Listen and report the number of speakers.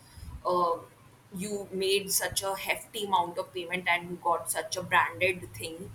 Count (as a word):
one